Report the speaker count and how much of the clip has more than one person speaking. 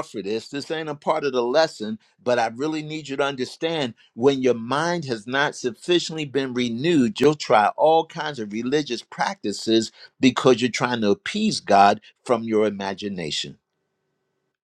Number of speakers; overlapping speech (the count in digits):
1, no overlap